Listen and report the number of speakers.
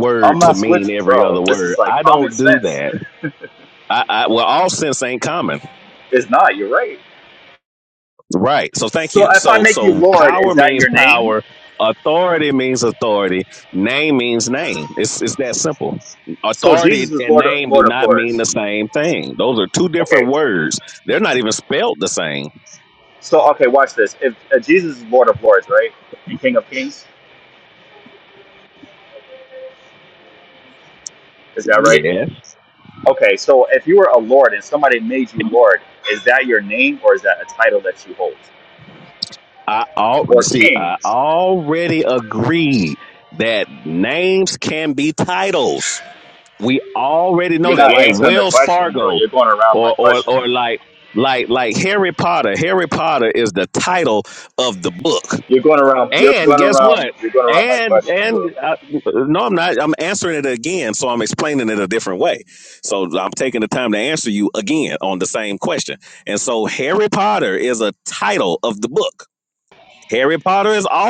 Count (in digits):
2